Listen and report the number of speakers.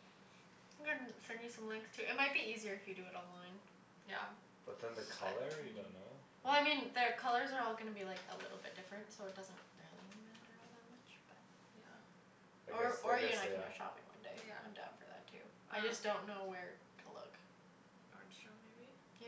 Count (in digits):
3